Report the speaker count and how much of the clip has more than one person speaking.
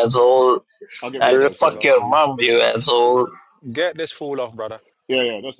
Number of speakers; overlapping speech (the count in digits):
3, about 19%